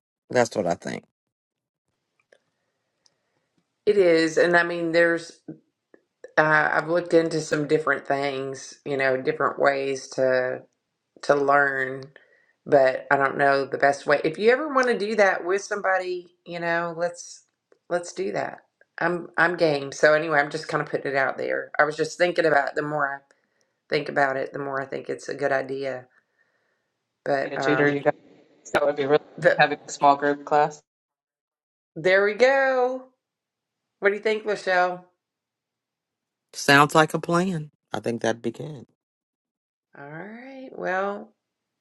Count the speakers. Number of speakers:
three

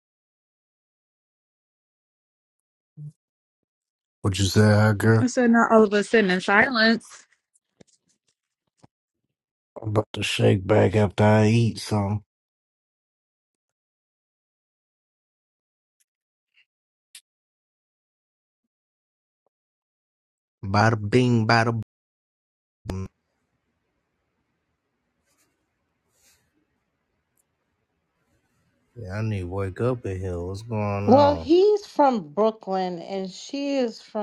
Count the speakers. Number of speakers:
three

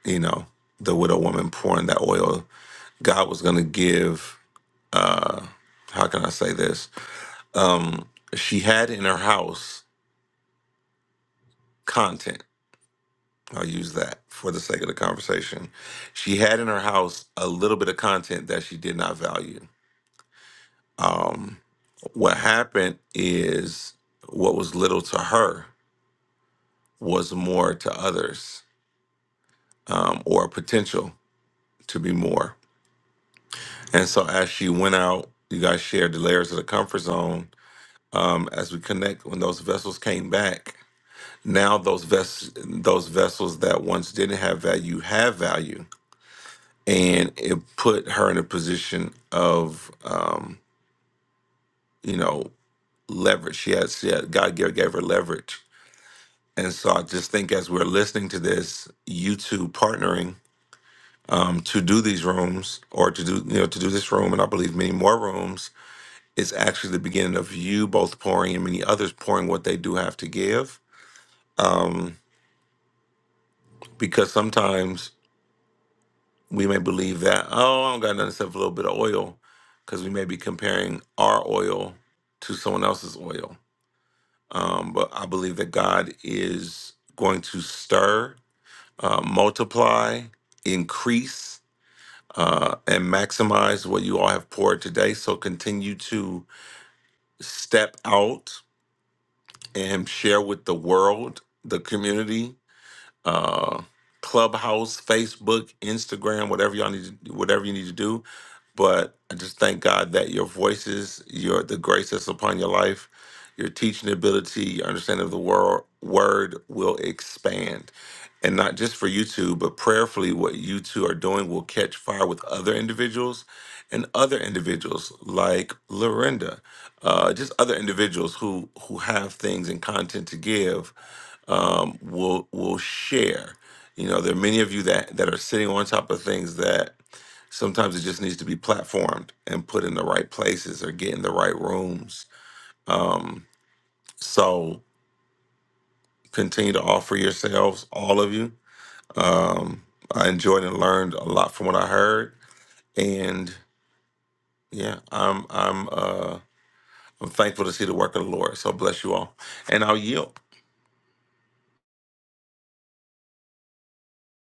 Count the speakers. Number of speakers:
one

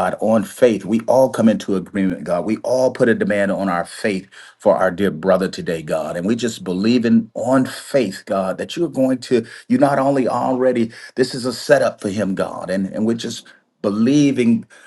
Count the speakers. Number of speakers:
one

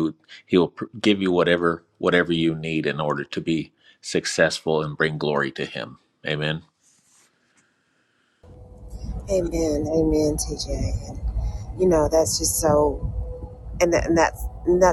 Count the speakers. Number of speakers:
two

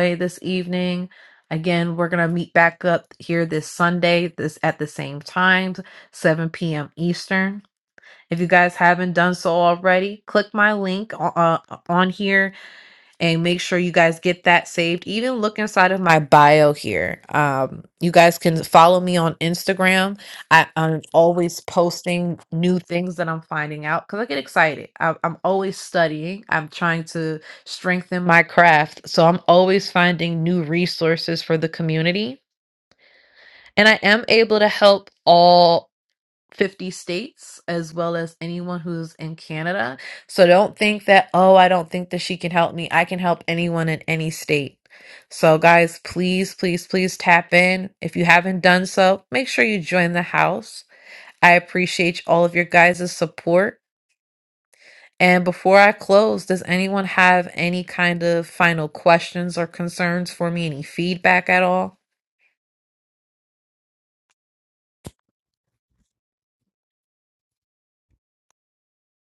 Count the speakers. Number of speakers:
one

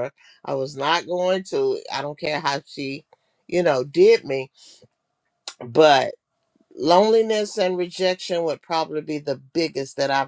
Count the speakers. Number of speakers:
one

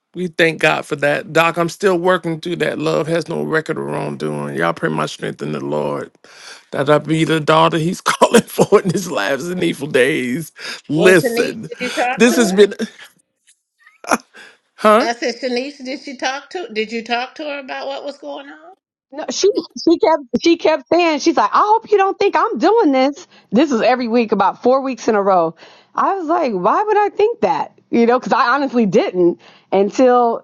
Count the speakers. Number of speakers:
three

